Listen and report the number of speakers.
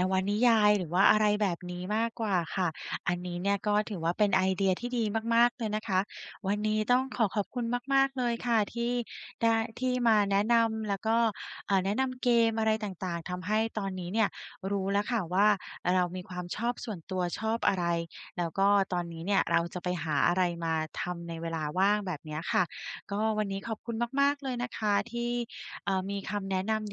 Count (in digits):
1